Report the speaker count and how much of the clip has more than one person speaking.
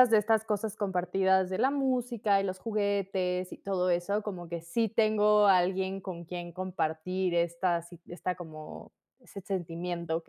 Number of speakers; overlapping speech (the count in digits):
1, no overlap